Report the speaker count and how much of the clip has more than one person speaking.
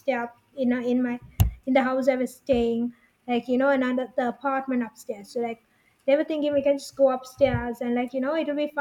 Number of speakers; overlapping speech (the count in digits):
1, no overlap